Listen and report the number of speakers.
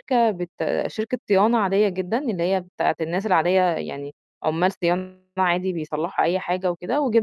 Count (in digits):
1